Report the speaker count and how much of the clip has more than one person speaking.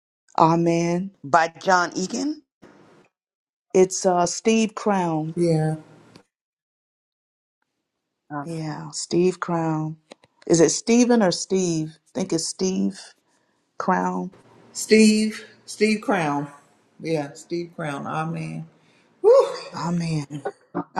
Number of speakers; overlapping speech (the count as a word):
three, no overlap